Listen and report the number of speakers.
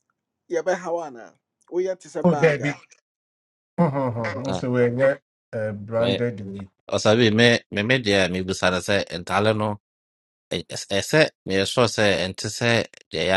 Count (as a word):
three